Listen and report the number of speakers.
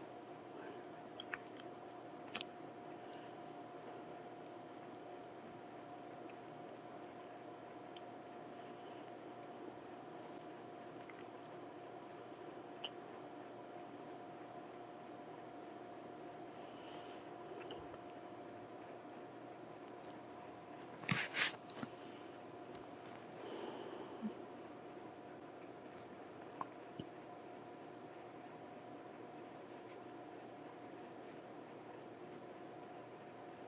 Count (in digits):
0